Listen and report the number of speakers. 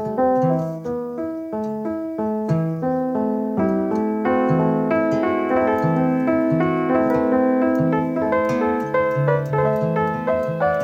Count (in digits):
0